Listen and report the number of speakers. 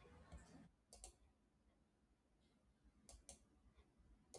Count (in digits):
0